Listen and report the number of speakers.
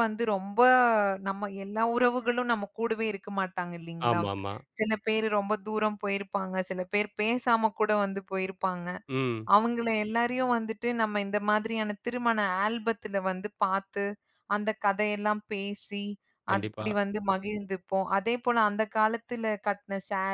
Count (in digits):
2